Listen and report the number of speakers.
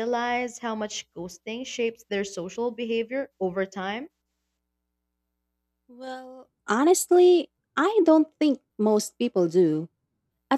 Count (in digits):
2